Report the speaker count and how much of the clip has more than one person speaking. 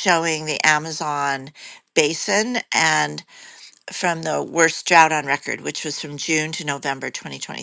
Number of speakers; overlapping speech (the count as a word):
one, no overlap